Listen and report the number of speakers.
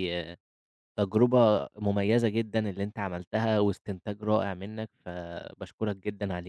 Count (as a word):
one